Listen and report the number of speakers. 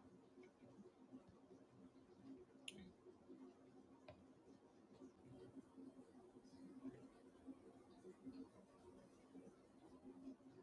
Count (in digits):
0